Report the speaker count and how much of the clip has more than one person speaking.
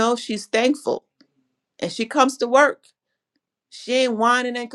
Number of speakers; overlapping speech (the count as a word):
one, no overlap